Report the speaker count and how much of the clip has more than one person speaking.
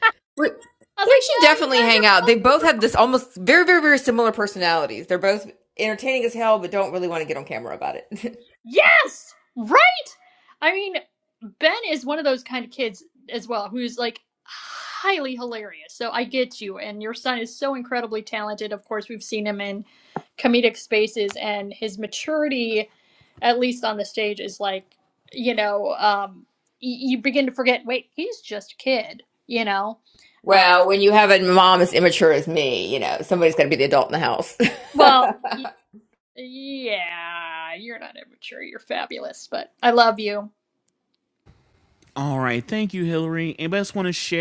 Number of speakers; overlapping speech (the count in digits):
3, about 6%